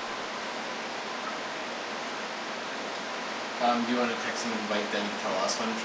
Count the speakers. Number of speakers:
1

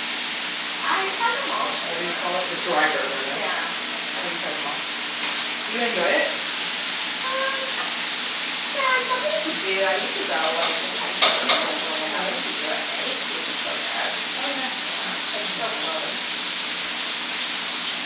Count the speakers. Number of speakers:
2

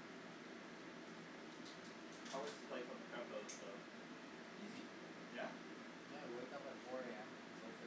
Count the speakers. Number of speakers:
2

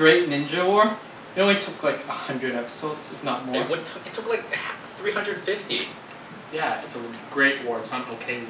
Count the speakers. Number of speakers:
3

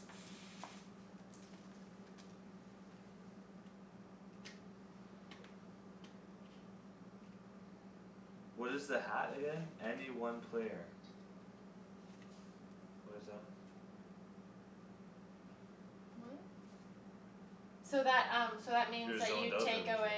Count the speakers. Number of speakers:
2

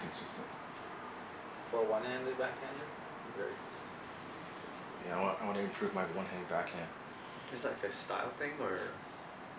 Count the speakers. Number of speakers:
3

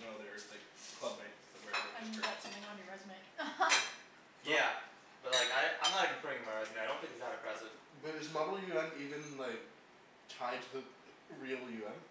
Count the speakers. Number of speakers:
4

